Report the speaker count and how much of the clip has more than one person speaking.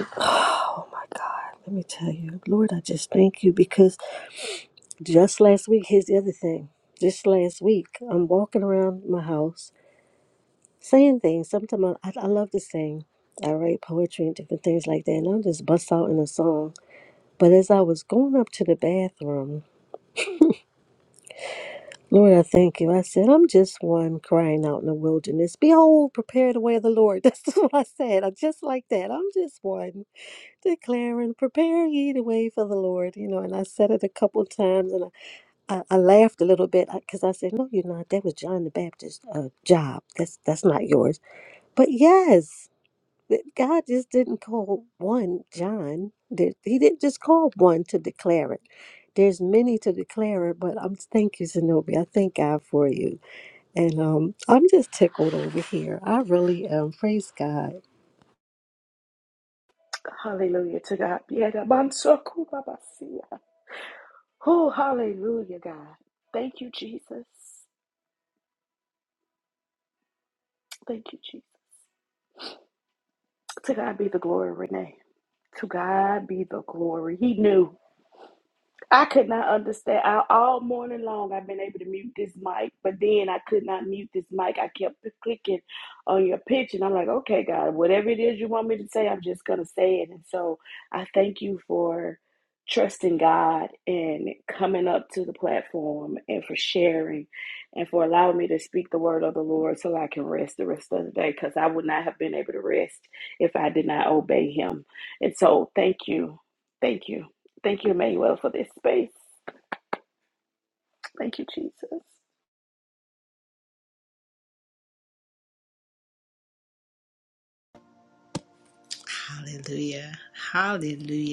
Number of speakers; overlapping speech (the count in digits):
3, no overlap